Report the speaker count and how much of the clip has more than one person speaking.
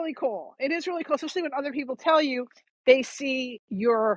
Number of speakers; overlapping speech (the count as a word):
one, no overlap